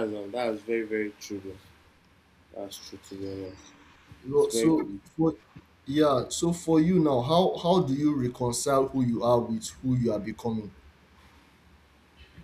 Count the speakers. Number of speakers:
2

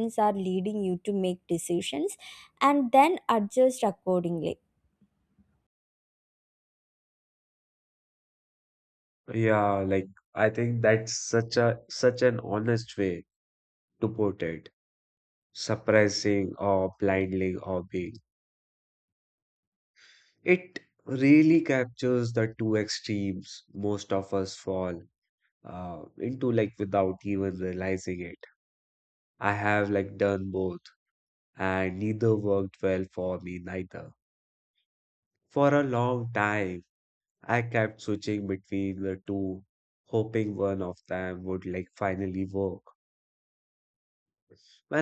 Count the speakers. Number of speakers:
2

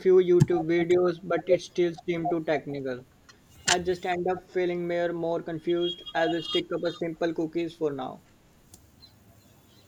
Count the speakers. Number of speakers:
1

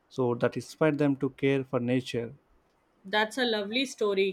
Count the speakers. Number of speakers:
2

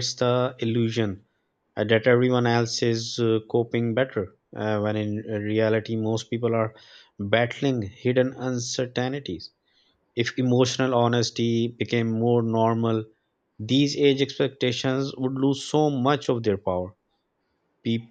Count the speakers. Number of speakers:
1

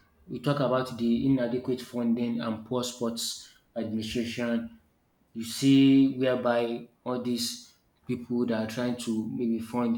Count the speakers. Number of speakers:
1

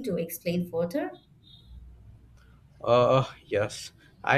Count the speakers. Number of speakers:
2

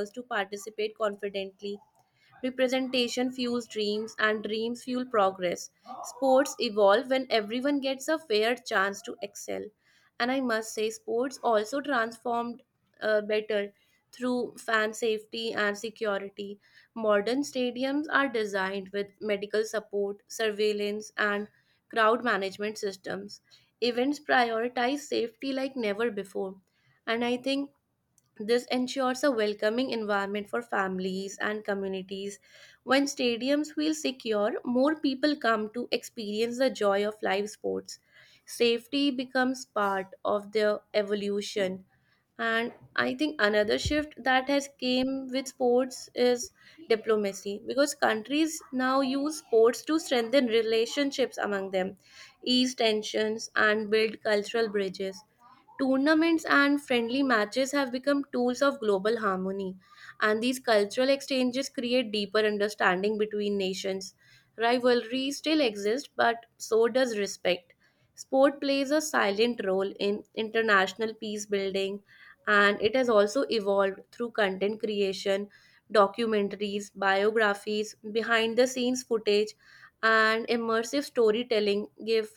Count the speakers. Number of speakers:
1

